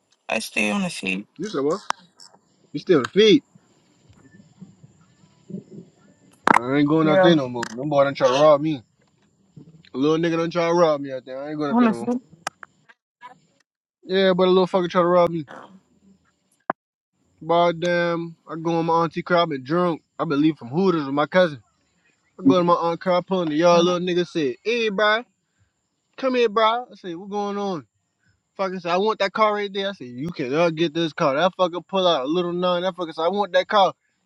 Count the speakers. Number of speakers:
2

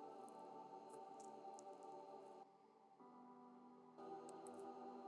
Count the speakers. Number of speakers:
0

